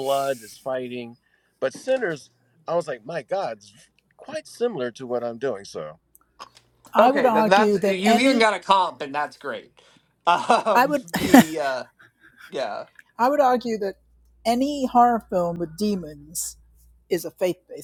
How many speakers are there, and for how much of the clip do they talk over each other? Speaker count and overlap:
three, about 10%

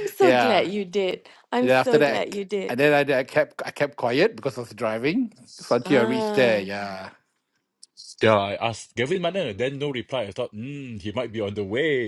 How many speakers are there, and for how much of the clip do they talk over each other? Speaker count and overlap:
three, about 20%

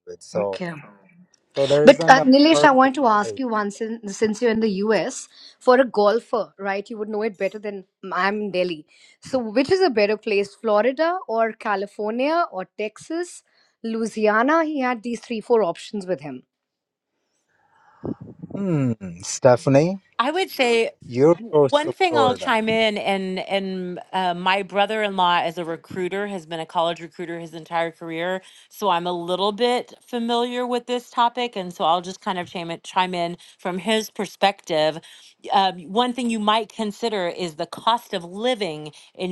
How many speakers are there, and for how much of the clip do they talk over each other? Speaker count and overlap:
three, about 7%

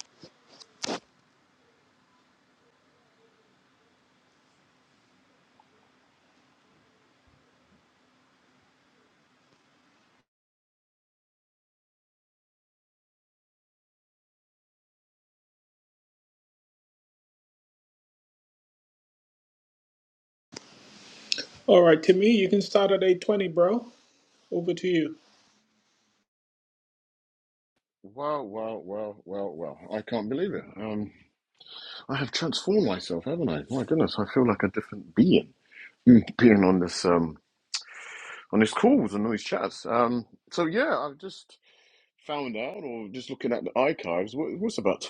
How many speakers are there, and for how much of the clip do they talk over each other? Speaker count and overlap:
two, no overlap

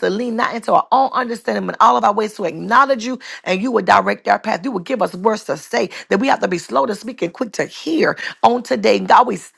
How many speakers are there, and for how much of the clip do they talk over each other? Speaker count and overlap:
one, no overlap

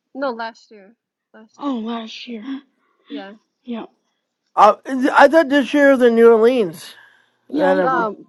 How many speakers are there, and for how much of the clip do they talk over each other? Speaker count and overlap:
three, about 8%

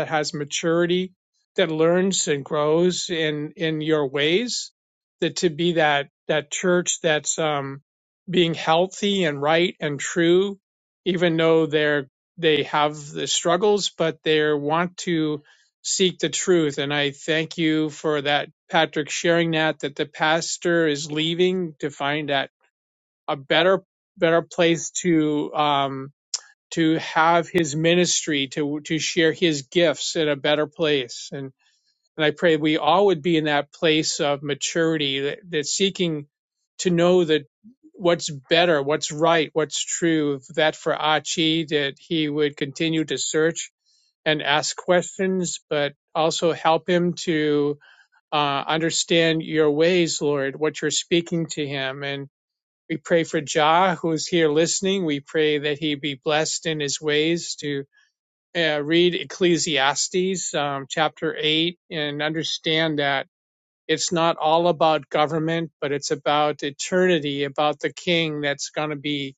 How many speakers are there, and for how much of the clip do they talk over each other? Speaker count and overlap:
one, no overlap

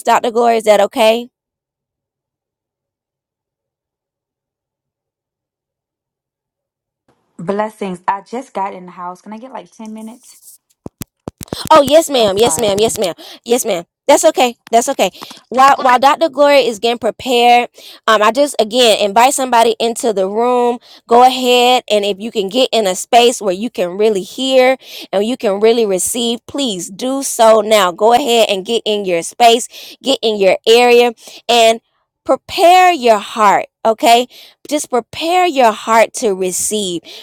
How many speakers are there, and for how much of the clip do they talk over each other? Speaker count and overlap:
two, about 2%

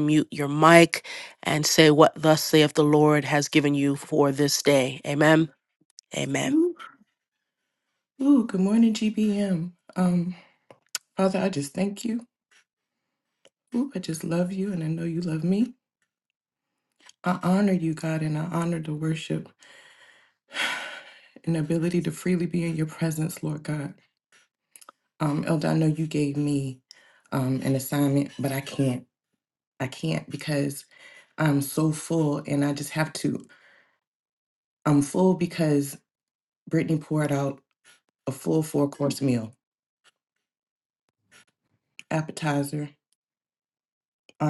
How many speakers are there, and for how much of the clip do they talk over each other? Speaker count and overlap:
two, under 1%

